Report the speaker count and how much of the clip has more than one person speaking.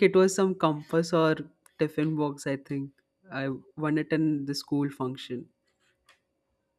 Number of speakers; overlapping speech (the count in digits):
1, no overlap